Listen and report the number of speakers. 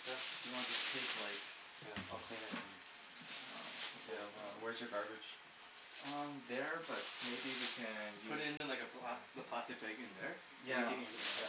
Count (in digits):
3